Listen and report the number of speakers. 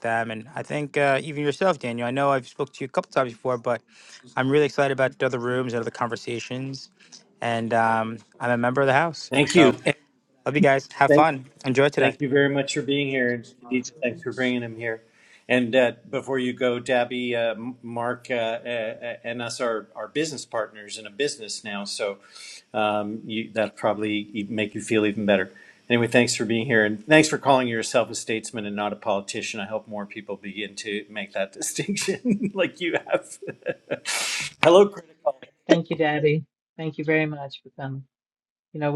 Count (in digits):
3